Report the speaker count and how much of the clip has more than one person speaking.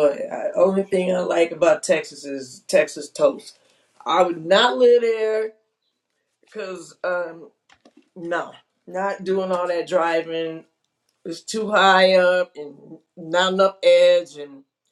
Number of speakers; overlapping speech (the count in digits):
1, no overlap